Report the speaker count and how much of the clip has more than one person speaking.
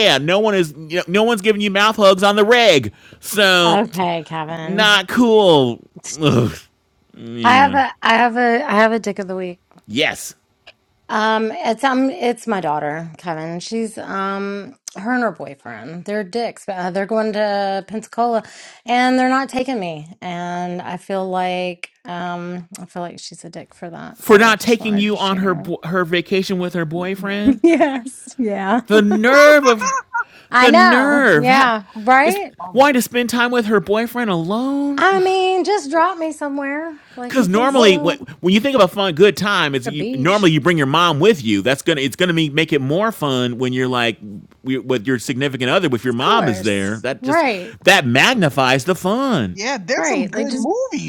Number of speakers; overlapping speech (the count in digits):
3, about 12%